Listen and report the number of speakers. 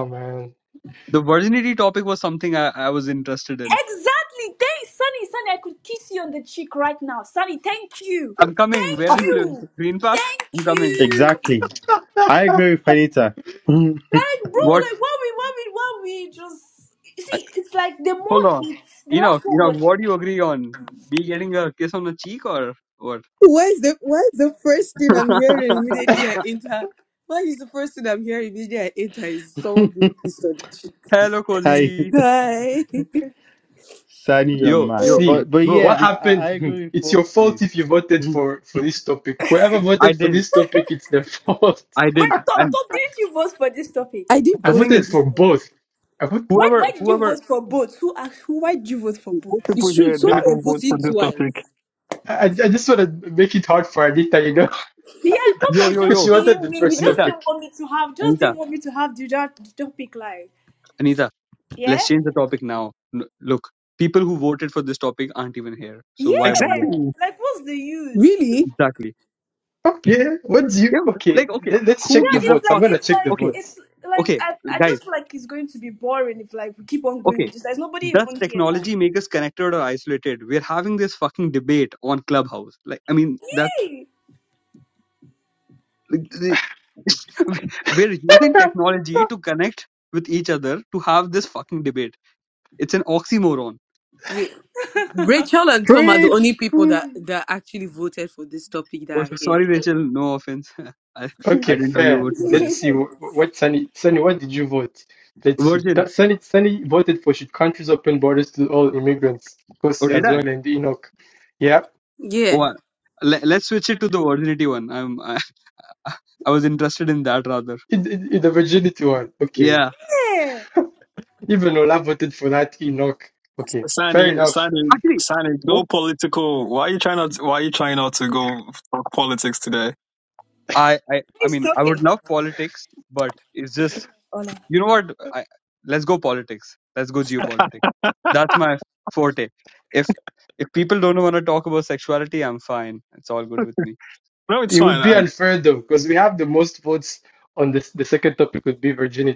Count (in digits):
6